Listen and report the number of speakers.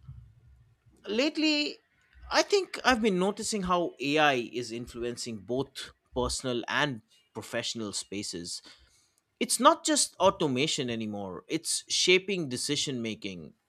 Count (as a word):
one